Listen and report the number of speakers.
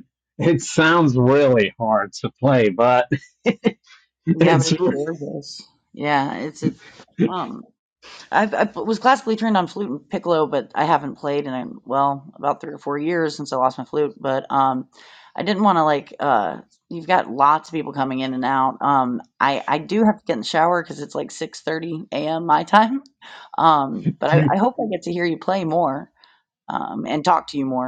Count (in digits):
2